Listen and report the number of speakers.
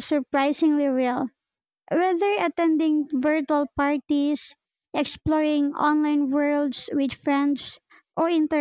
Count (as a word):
one